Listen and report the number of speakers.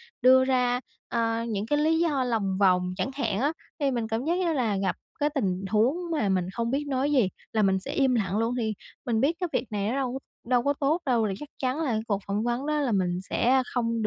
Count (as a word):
one